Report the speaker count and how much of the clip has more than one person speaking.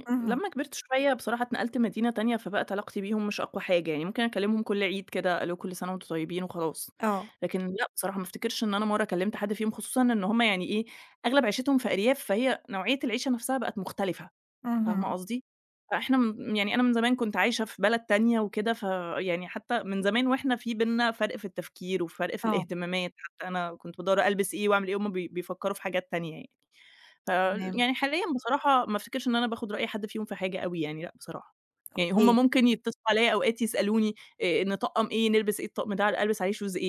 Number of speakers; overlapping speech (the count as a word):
two, about 4%